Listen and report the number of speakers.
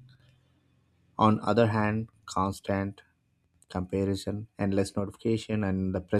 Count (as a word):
one